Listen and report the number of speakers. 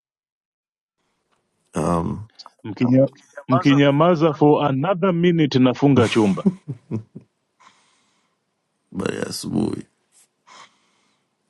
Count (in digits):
2